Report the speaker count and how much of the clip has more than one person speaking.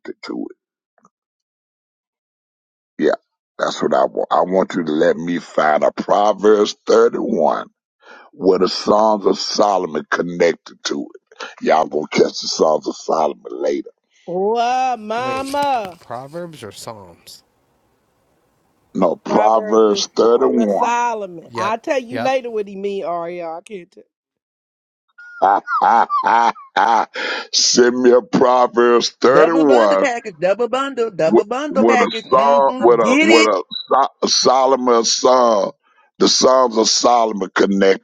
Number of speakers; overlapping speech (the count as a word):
four, about 15%